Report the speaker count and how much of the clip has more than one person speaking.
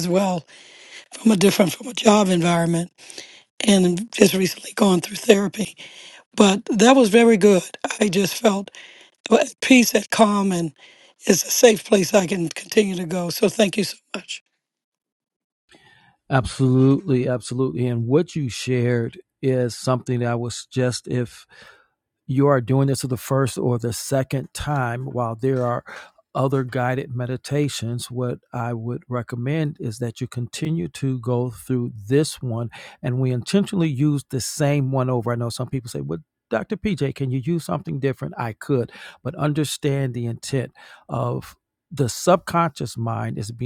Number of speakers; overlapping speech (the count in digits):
2, no overlap